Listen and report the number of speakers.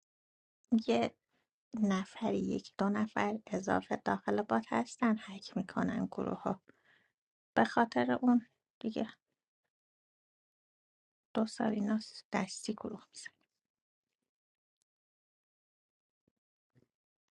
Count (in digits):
1